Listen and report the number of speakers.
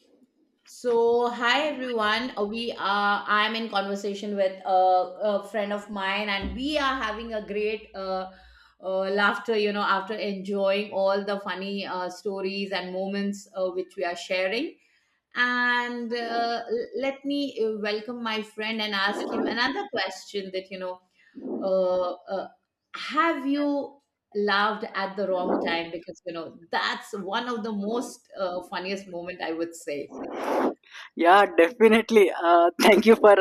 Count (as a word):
two